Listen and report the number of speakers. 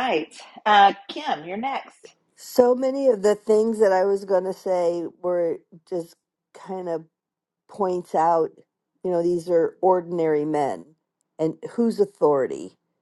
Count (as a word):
two